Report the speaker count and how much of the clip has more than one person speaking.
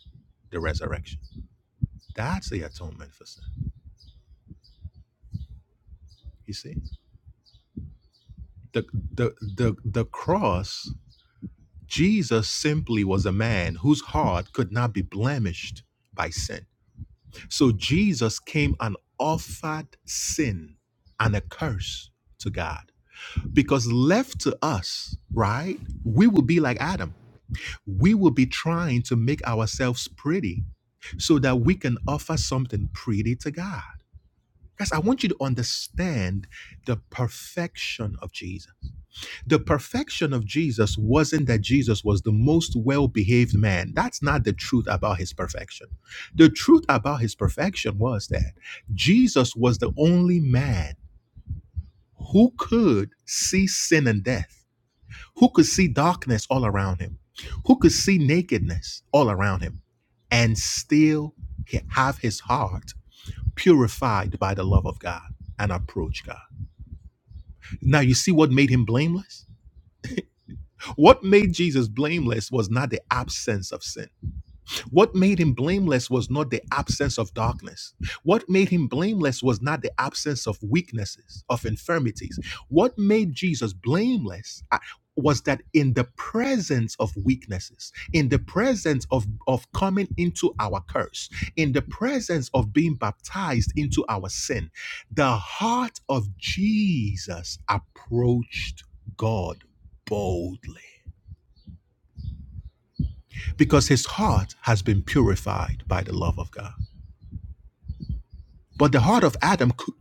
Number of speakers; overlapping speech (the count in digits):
1, no overlap